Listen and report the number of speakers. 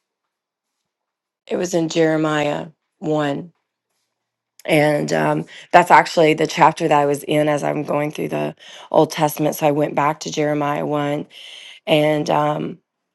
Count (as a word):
one